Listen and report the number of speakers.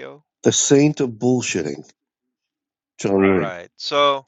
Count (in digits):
2